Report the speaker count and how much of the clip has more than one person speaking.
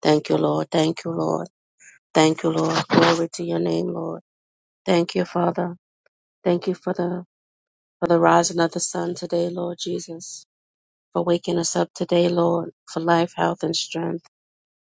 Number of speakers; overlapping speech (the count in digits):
1, no overlap